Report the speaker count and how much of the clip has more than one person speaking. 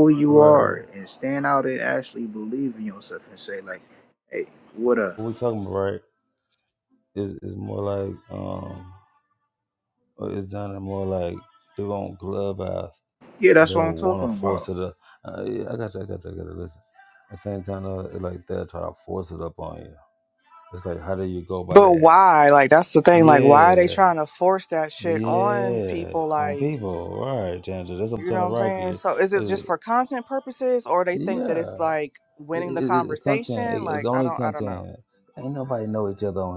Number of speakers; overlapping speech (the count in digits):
3, about 24%